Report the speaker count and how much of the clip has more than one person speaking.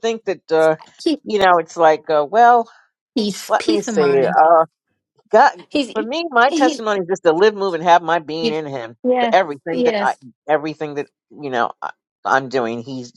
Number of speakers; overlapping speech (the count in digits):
2, about 15%